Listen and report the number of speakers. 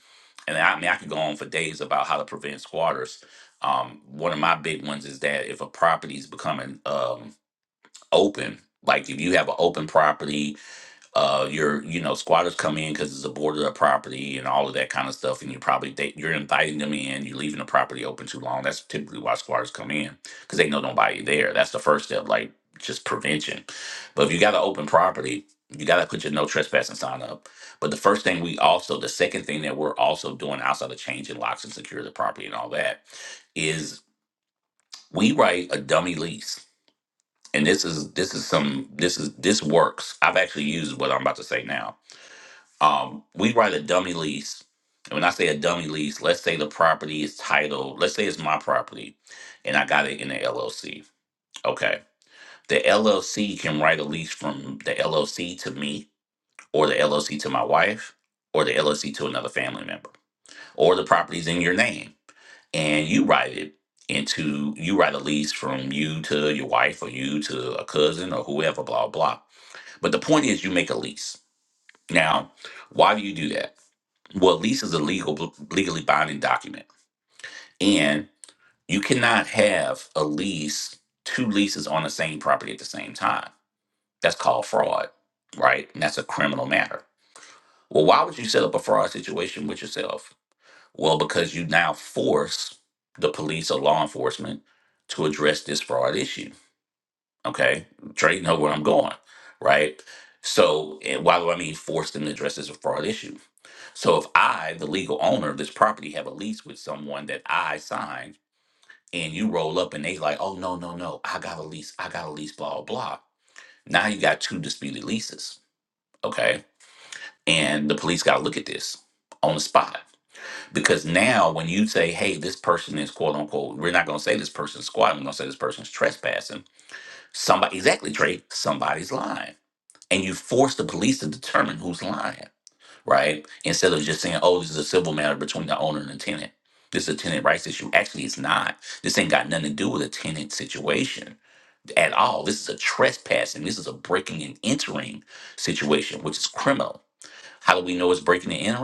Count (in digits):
1